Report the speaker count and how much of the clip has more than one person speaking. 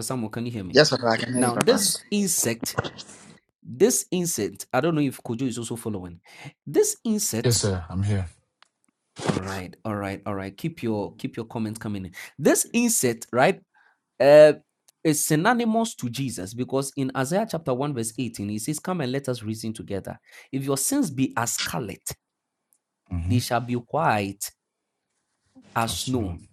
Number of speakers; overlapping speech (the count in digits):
3, about 5%